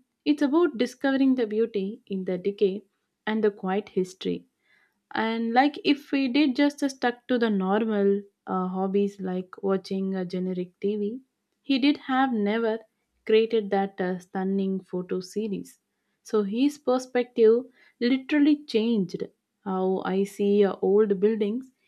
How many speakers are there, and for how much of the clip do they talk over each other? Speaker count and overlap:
1, no overlap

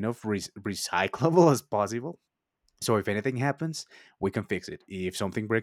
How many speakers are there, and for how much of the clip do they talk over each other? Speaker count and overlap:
1, no overlap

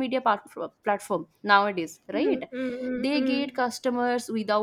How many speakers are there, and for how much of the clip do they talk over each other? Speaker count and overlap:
2, about 19%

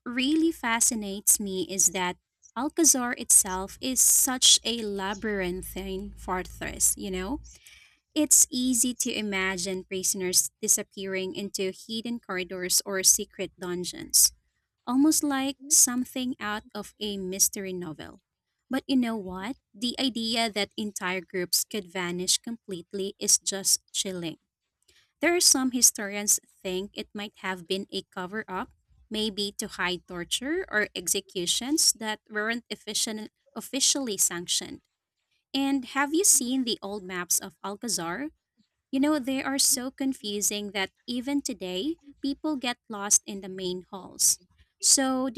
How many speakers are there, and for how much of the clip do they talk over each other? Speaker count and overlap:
1, no overlap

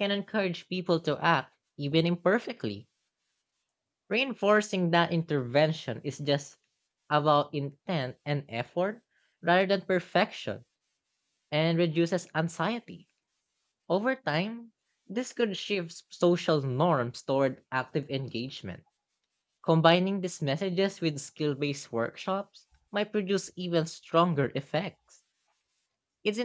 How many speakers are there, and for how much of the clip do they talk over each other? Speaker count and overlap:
1, no overlap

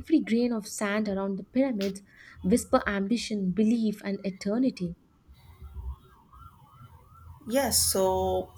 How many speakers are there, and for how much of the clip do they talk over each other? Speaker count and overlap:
2, no overlap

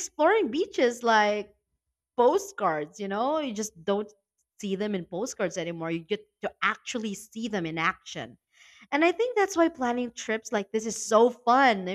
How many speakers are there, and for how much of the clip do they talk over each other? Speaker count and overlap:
1, no overlap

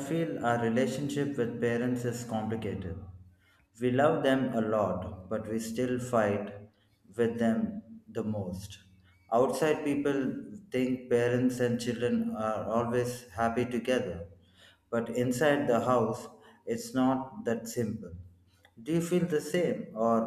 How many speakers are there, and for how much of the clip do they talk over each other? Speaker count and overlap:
1, no overlap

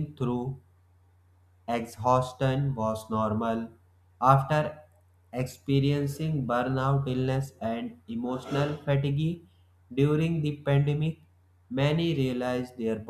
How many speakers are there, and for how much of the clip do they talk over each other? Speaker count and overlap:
1, no overlap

